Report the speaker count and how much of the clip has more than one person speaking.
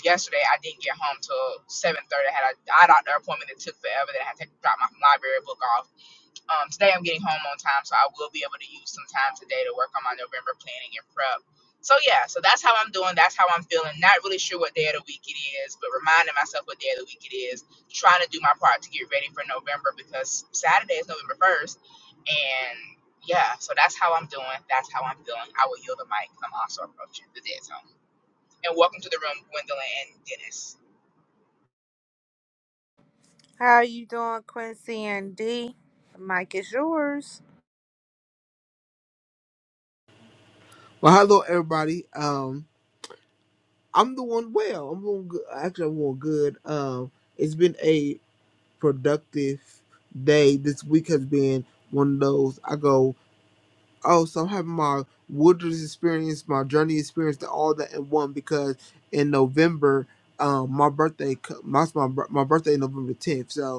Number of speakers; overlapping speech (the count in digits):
3, no overlap